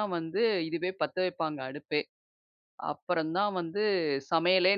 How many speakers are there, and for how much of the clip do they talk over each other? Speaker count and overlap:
one, no overlap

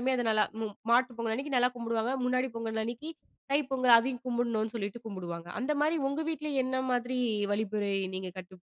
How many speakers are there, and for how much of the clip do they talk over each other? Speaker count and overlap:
one, no overlap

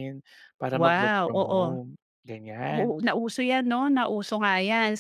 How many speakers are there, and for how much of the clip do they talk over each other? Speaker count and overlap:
two, about 24%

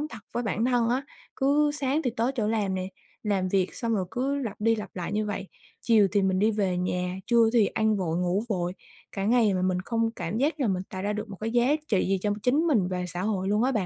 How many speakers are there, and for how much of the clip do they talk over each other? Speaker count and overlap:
one, no overlap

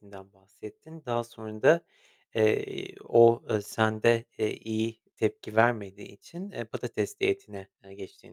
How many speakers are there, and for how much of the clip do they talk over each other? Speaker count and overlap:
one, no overlap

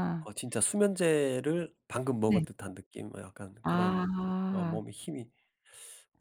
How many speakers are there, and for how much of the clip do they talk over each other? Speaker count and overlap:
two, about 14%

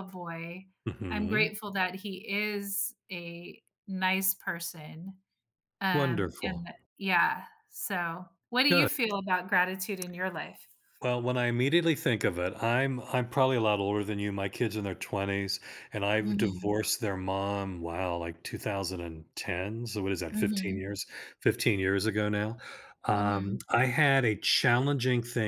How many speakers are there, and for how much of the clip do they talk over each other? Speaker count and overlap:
two, about 11%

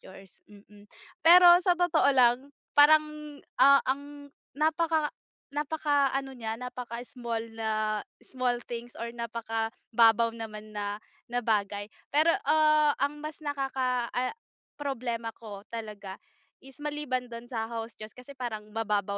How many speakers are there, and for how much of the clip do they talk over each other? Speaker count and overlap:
one, no overlap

